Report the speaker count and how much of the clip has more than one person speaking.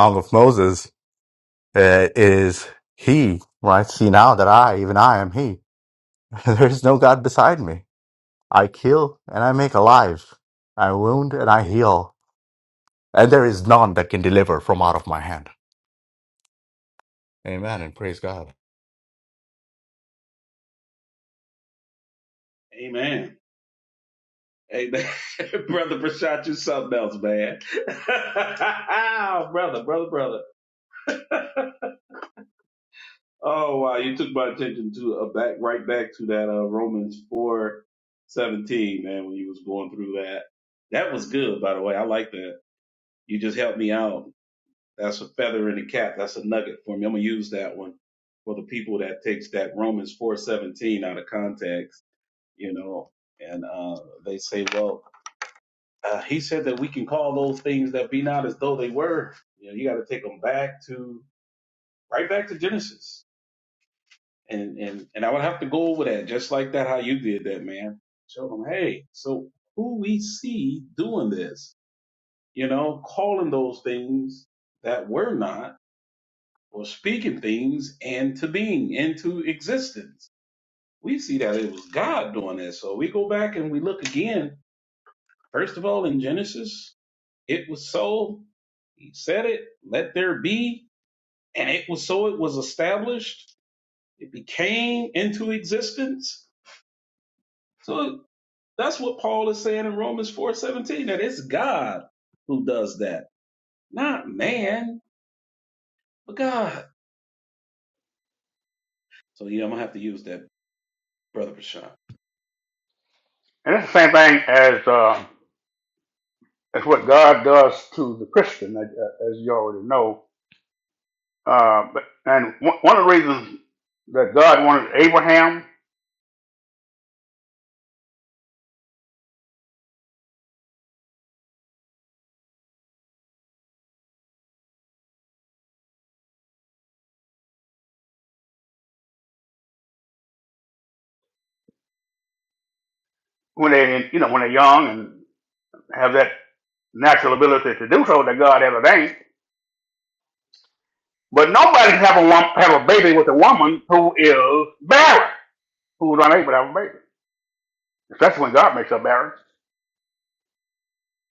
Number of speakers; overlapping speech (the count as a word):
three, no overlap